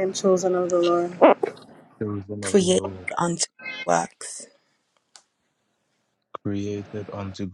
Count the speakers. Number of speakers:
three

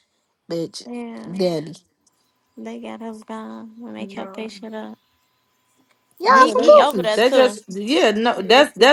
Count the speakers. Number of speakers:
three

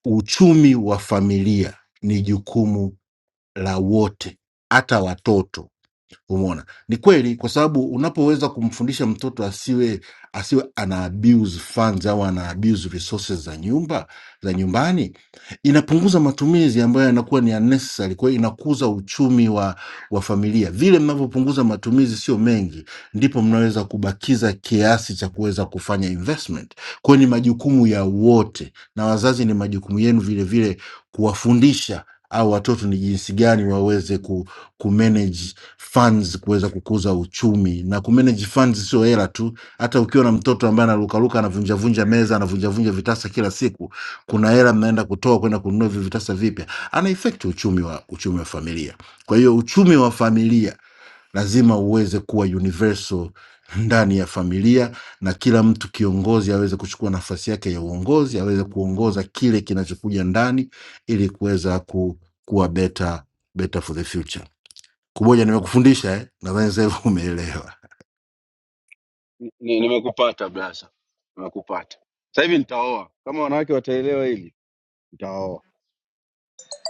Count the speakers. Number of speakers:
two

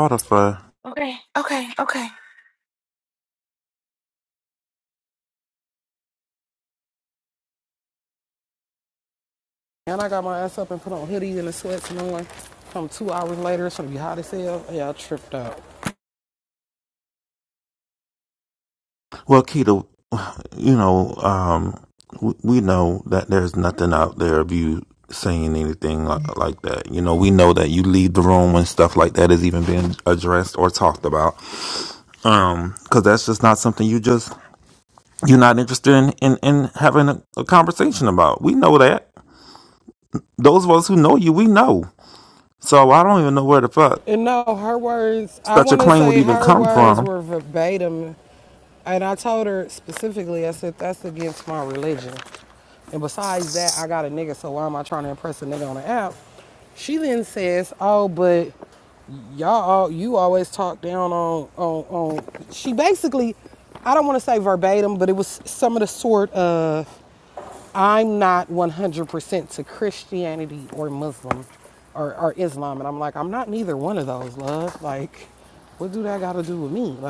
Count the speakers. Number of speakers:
three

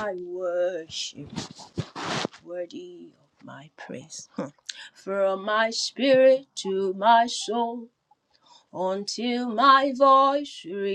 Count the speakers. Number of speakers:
one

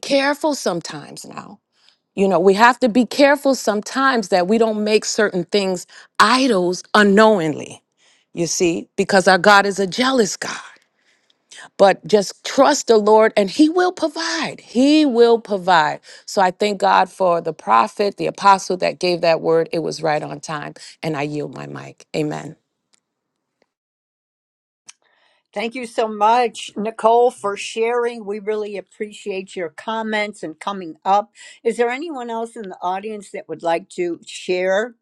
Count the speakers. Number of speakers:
two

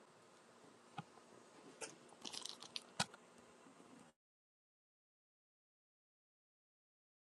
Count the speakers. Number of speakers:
zero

